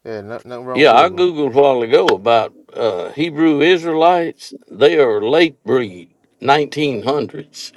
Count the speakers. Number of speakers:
2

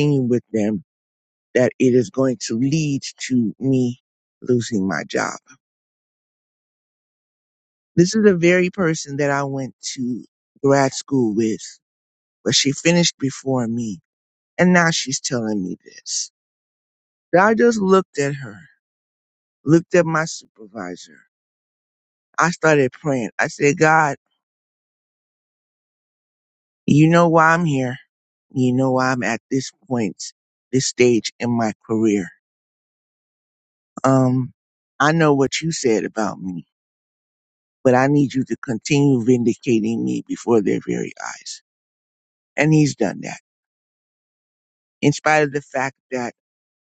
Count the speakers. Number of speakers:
1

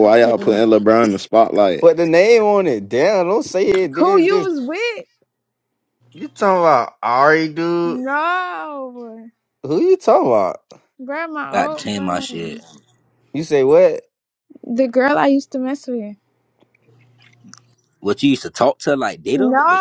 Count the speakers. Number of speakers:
4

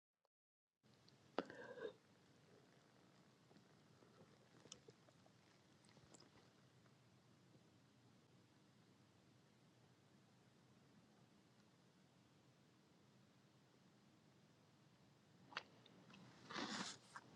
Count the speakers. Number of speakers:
0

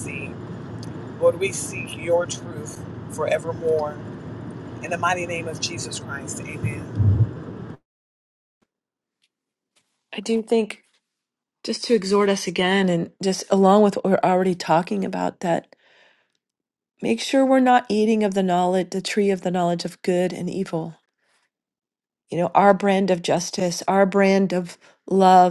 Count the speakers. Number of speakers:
2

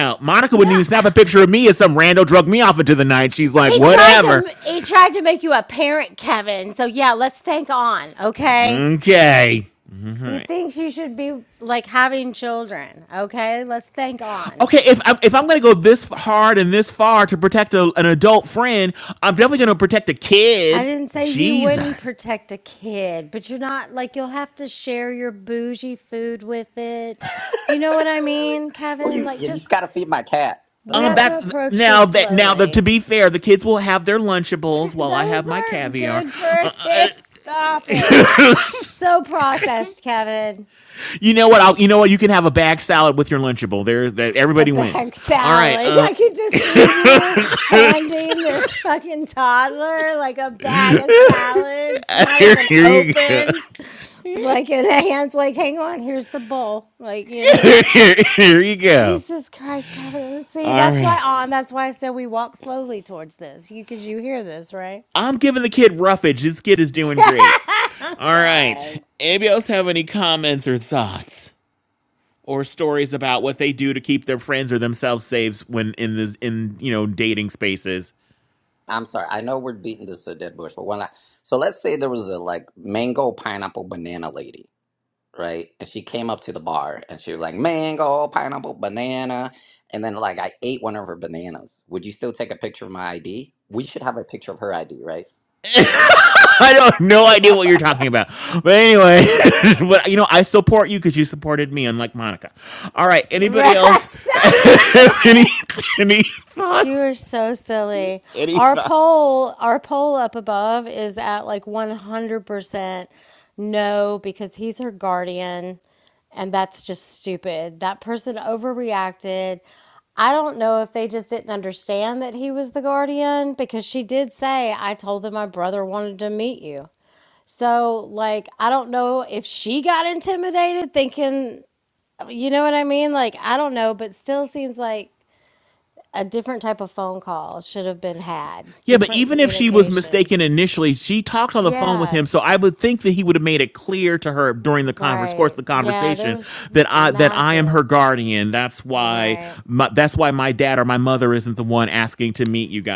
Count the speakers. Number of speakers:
3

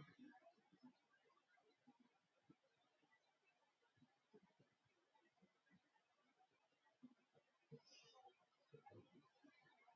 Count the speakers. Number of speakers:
0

